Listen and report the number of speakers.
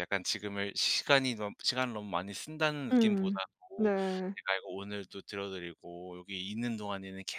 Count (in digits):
2